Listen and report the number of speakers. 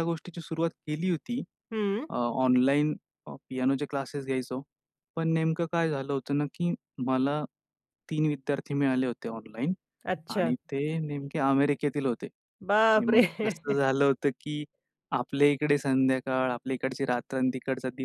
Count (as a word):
two